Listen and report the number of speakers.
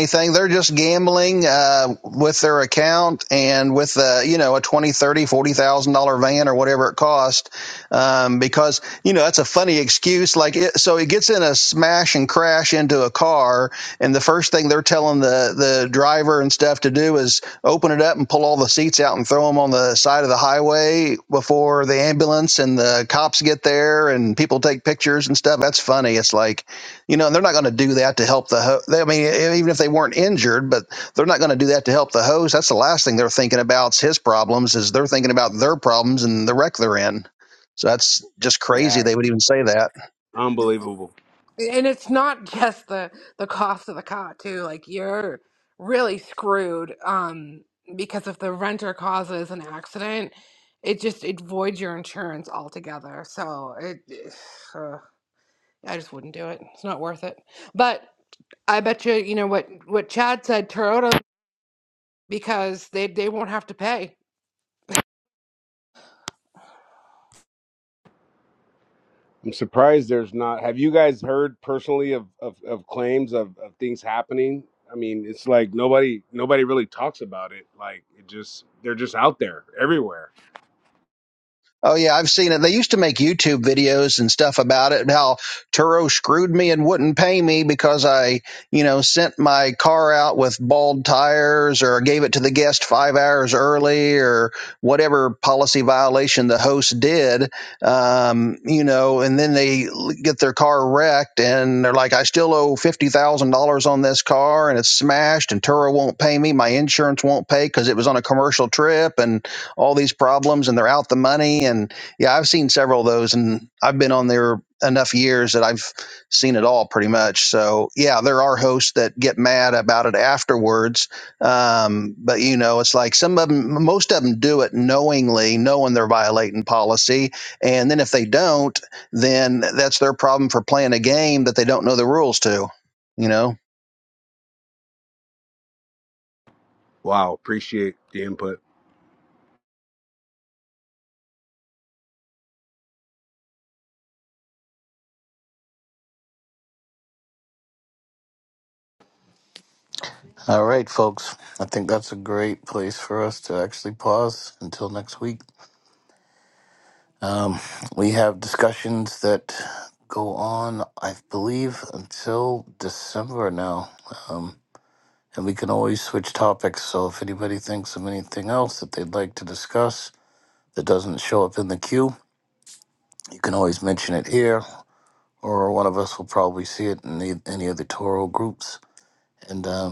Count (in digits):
4